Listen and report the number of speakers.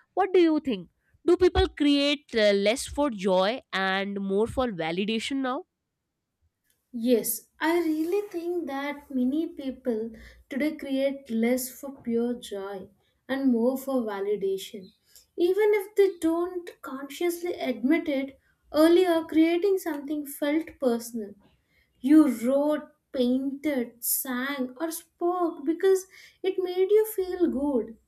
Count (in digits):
2